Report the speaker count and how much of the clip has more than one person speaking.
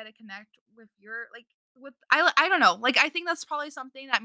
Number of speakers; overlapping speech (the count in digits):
1, no overlap